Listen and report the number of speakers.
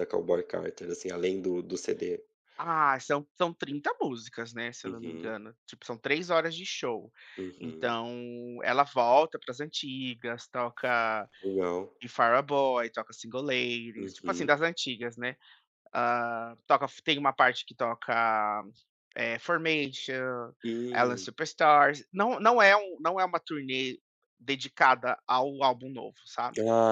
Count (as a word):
two